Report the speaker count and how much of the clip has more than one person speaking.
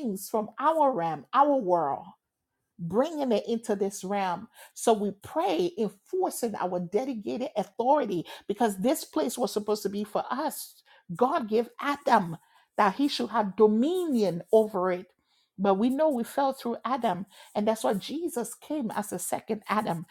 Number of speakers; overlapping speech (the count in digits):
1, no overlap